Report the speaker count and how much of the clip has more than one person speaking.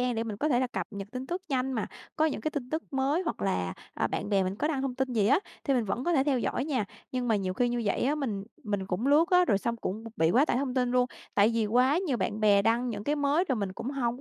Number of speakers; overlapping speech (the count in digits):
1, no overlap